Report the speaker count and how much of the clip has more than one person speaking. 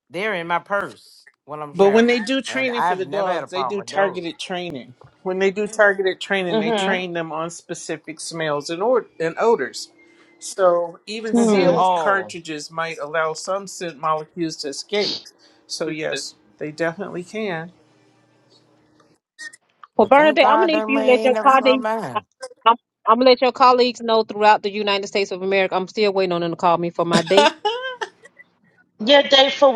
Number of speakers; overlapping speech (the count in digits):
4, about 21%